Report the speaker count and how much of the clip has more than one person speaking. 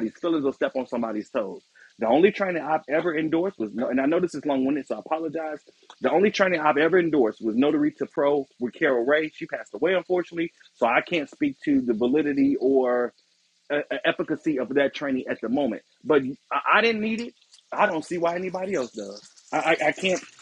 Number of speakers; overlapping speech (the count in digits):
1, no overlap